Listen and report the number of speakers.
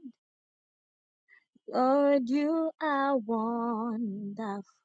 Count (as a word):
one